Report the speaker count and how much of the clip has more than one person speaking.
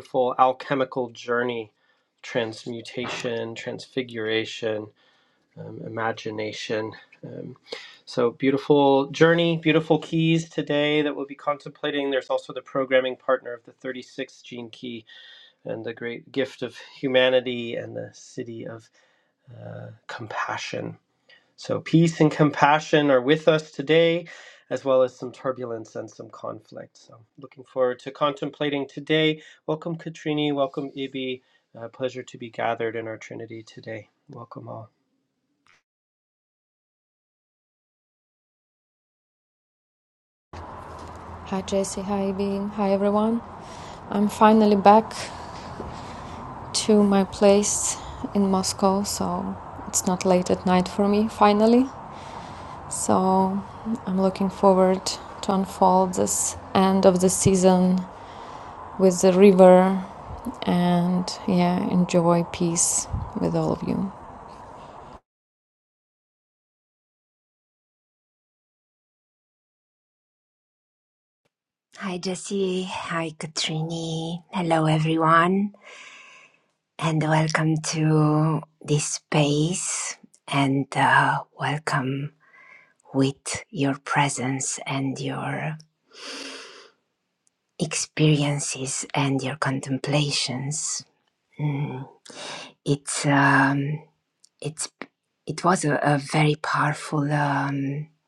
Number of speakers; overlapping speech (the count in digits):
3, no overlap